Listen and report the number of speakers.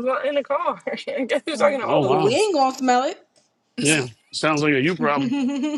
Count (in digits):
3